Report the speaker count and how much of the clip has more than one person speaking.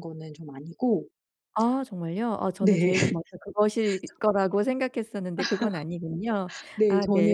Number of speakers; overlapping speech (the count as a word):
two, about 11%